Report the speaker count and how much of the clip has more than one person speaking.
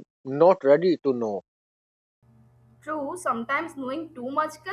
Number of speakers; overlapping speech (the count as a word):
two, no overlap